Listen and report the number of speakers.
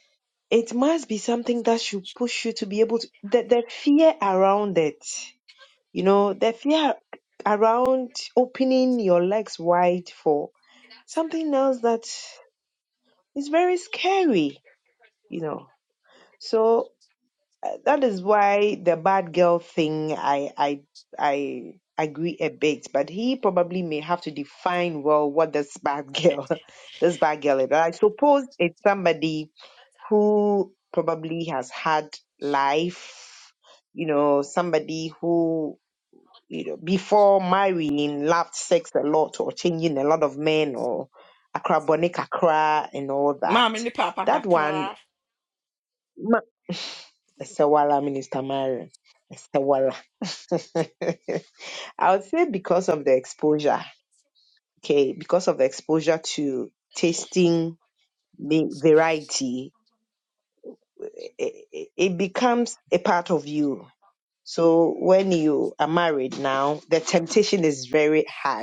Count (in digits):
2